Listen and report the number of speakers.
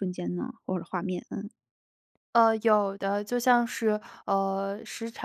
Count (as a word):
two